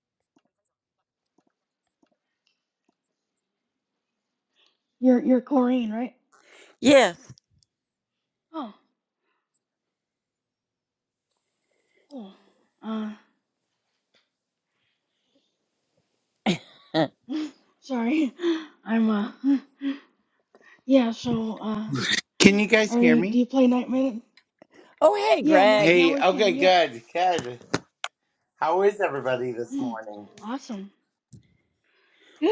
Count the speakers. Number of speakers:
three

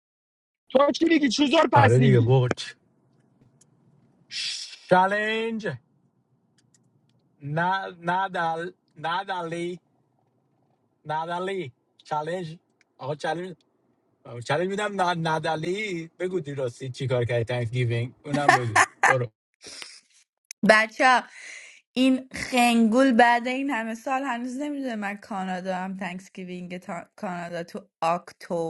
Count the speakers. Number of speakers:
three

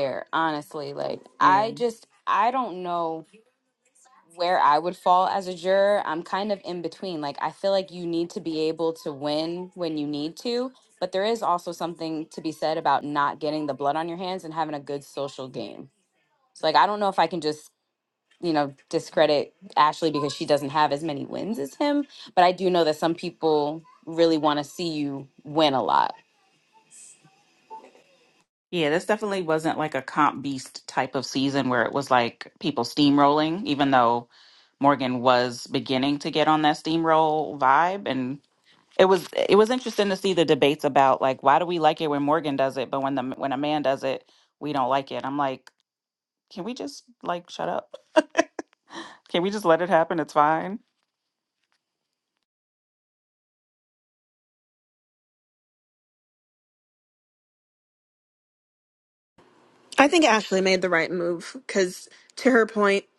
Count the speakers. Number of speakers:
three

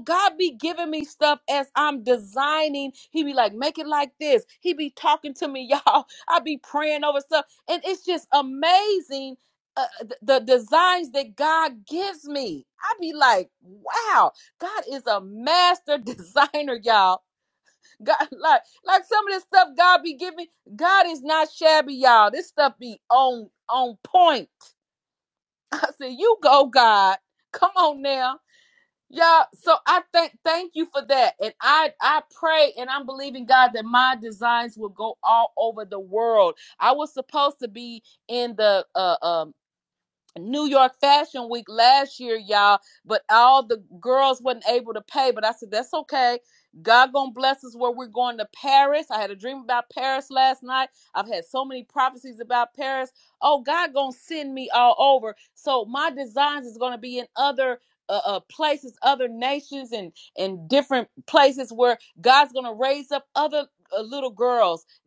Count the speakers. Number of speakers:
one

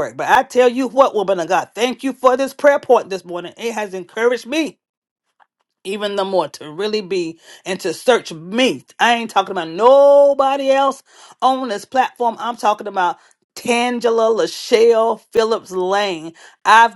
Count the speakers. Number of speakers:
one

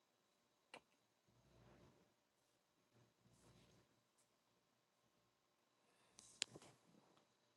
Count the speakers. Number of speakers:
zero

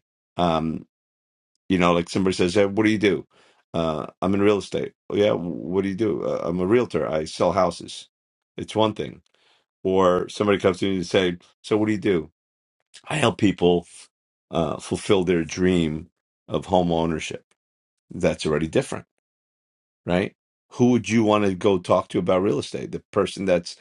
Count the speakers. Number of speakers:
one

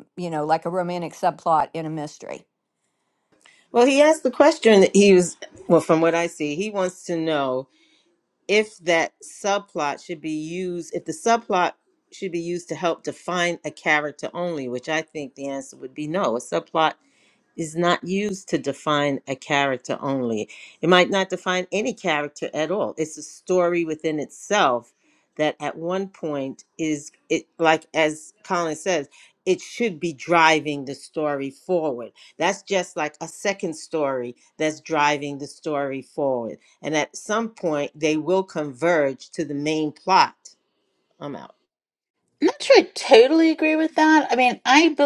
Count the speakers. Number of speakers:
three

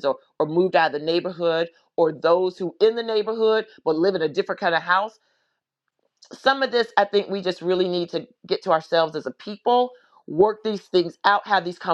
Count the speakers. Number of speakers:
one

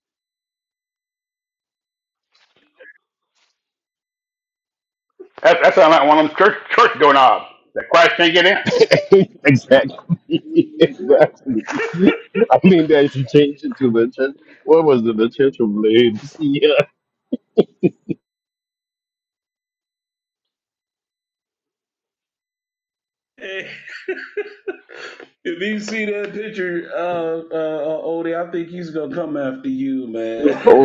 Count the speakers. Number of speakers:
three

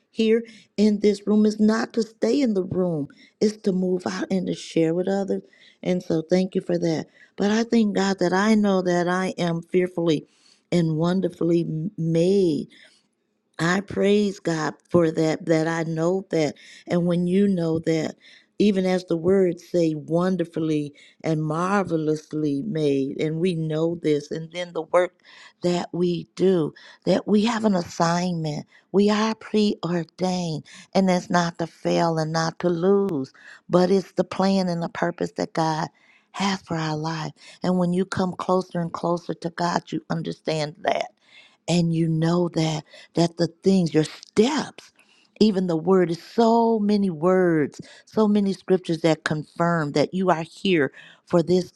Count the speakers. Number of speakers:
one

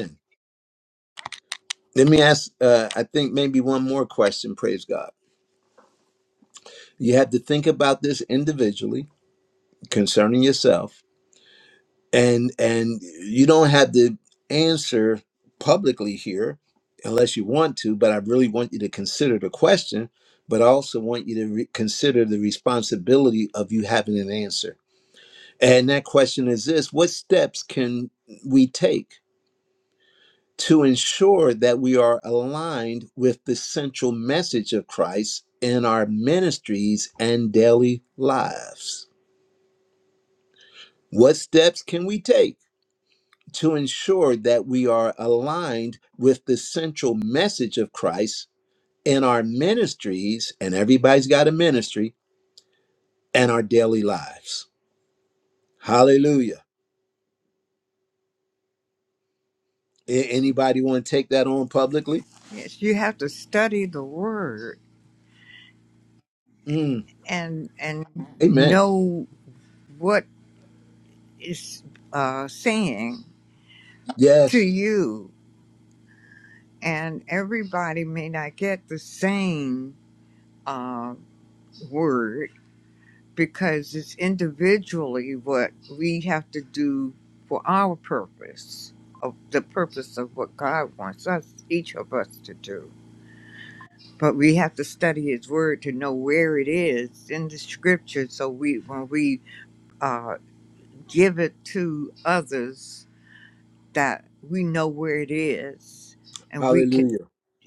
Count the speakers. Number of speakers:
two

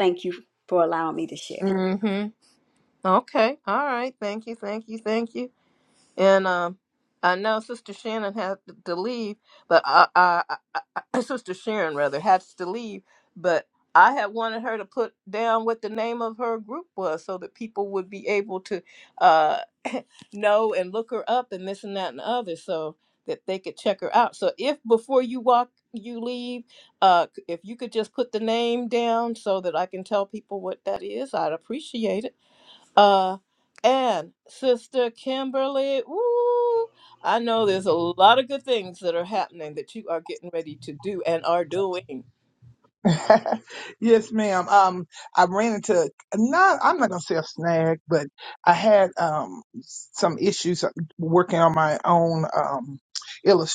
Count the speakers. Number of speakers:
three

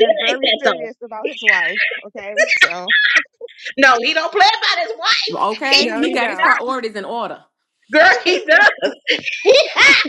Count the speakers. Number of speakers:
three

